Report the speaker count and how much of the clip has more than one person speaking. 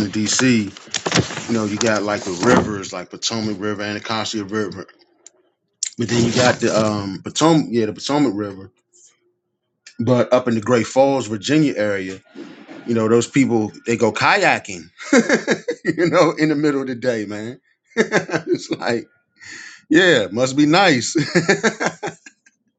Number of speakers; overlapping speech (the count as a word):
one, no overlap